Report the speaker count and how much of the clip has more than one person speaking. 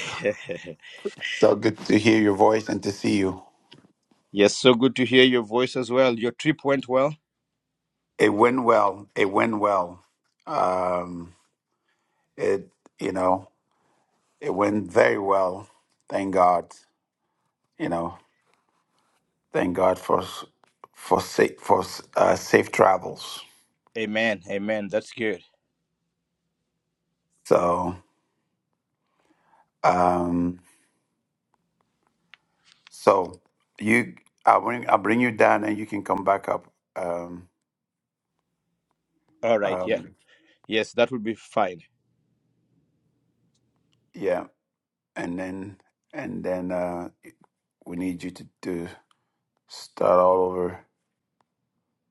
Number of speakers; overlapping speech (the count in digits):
2, about 1%